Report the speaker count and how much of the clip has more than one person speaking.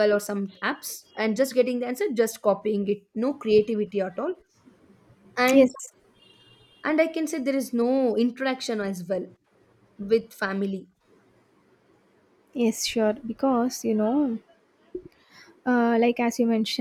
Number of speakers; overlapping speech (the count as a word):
two, about 1%